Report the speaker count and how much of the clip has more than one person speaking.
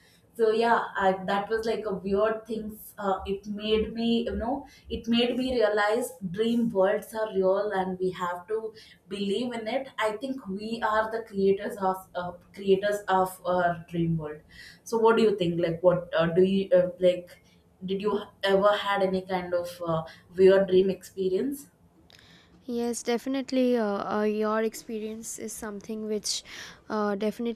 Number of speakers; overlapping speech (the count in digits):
2, no overlap